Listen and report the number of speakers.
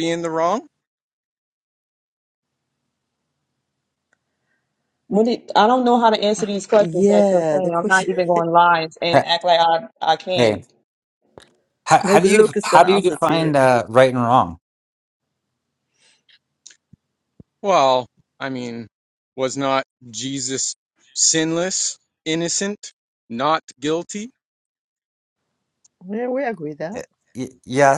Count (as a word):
four